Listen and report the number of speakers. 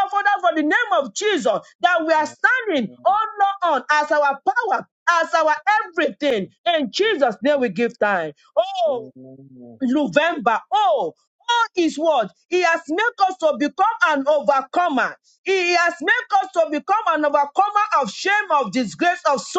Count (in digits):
2